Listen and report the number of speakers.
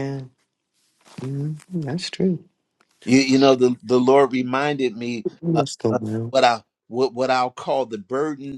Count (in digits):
2